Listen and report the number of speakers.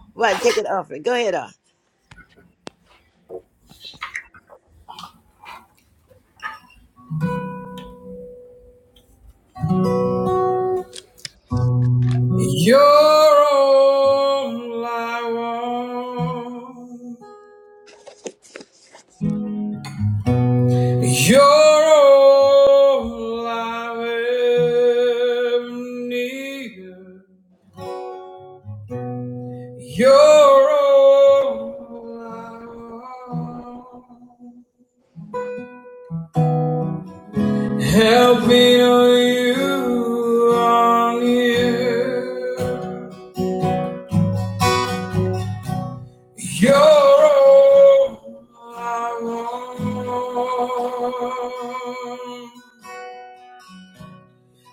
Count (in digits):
2